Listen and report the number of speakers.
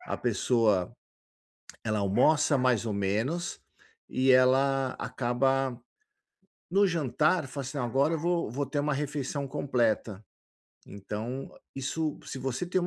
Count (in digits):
1